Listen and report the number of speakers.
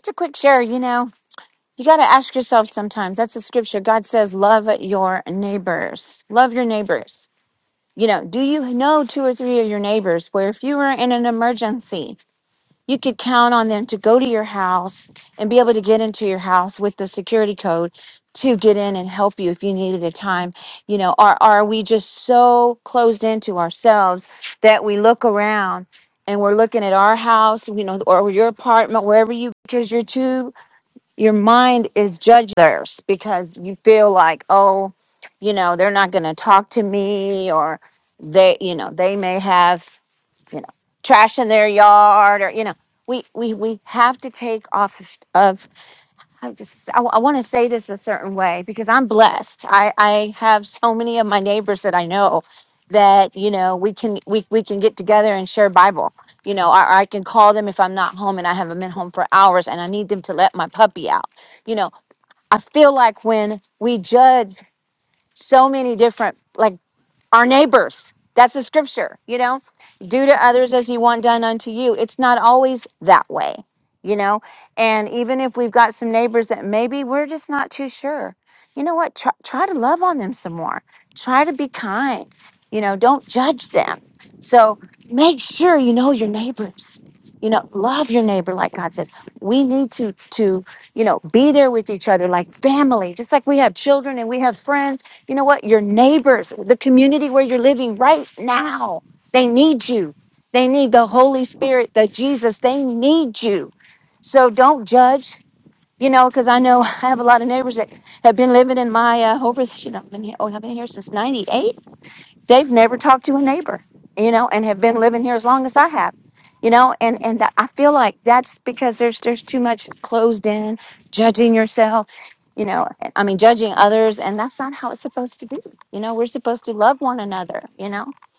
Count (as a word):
one